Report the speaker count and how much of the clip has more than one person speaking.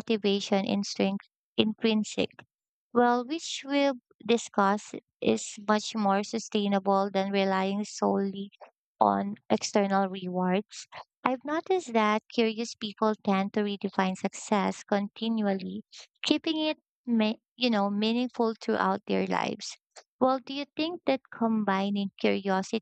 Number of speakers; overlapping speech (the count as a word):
one, no overlap